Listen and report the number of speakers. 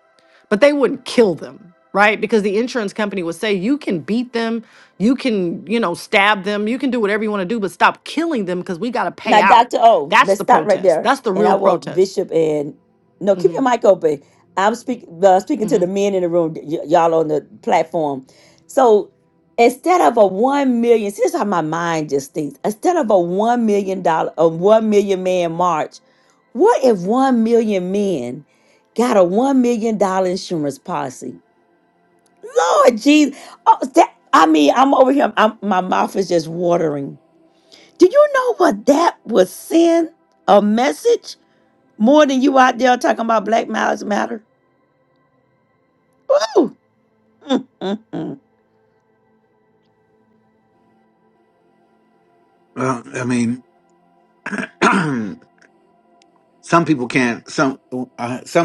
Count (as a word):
three